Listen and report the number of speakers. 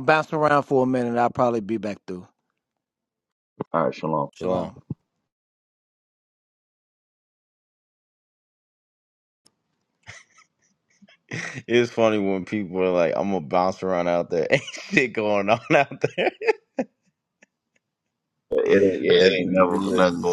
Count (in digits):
3